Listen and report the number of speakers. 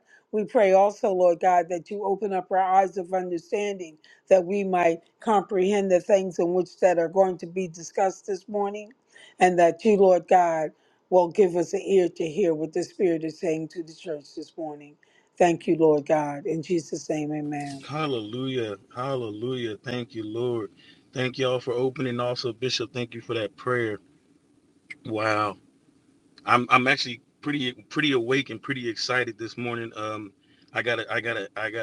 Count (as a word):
two